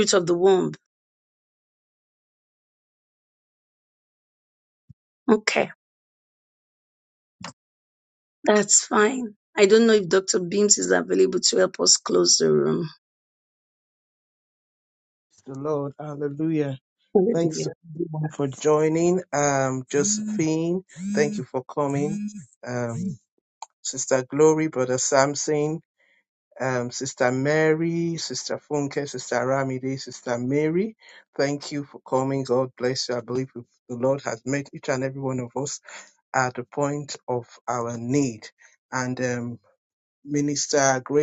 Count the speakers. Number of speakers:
two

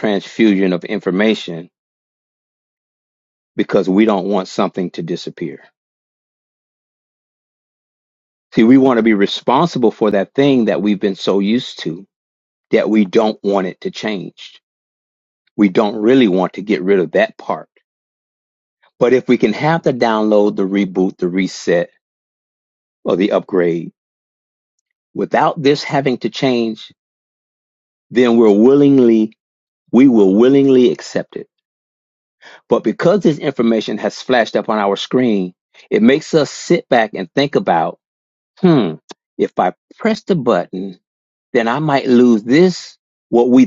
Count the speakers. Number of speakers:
one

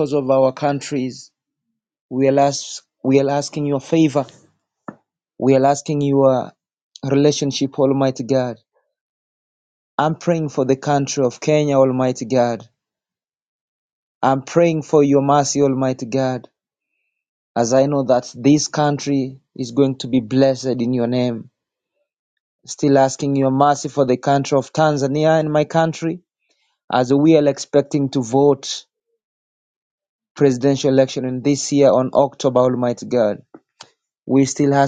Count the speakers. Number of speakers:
one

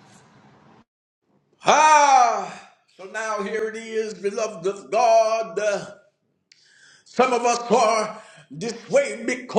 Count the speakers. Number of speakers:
one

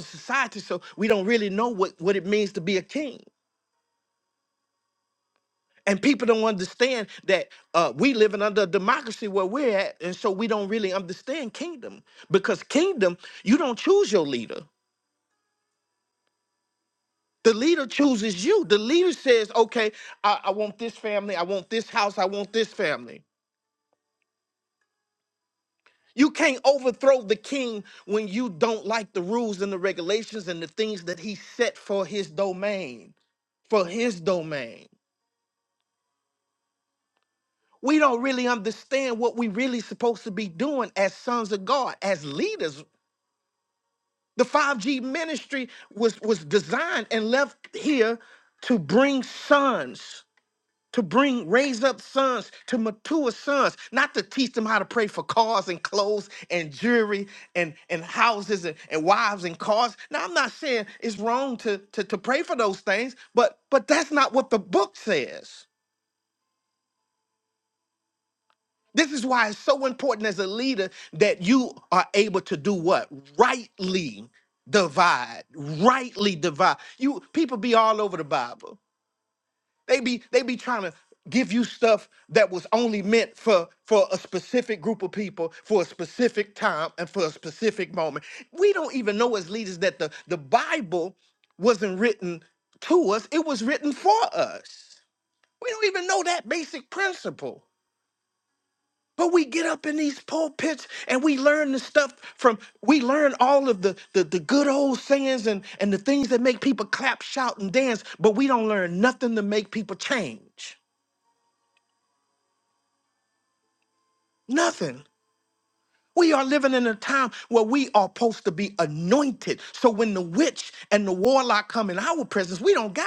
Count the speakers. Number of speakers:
one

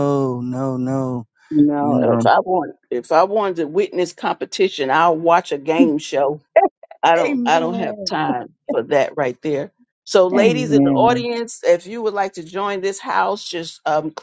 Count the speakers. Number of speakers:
two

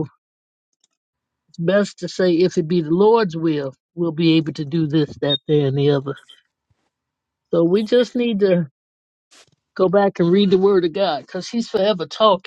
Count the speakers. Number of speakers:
one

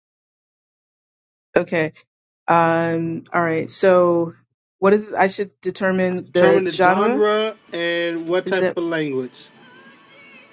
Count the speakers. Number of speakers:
two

